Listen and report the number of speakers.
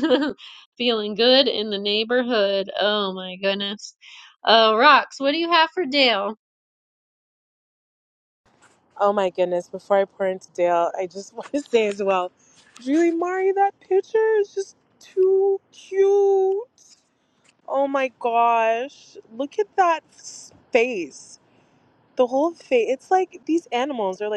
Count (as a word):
two